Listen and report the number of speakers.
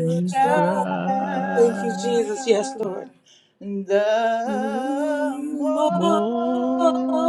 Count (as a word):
three